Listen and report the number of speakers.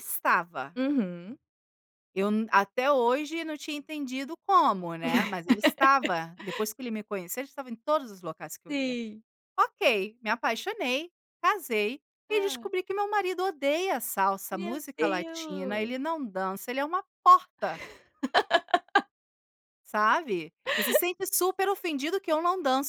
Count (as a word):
two